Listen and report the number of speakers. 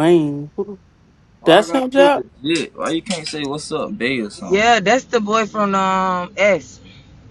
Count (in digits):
3